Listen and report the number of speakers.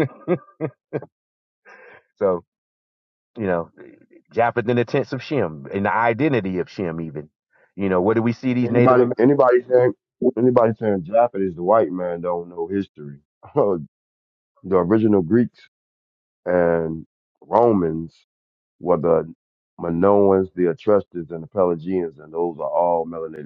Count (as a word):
two